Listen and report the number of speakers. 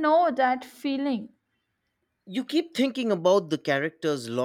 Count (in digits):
2